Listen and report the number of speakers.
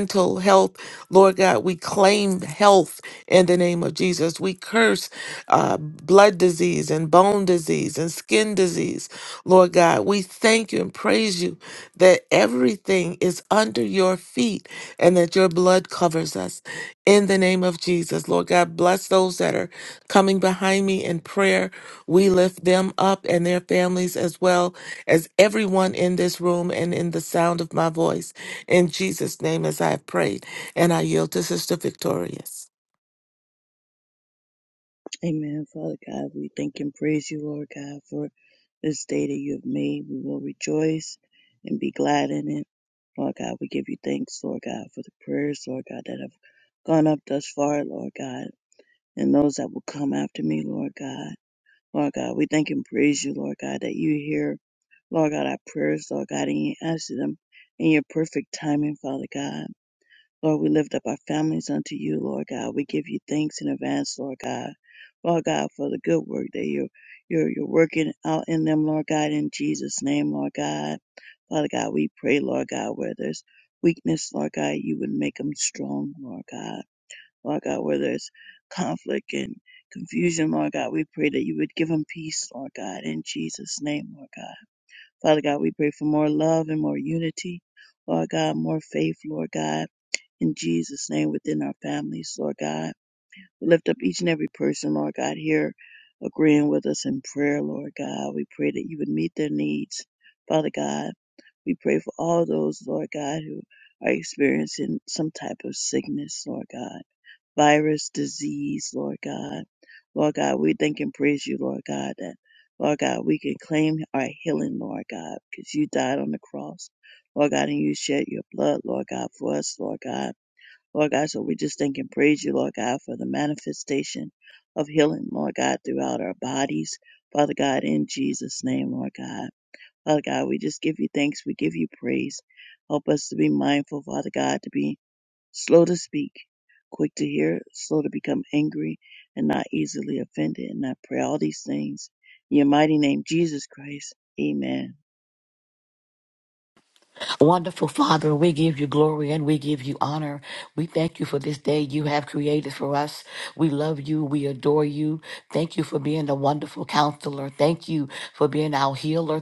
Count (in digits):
3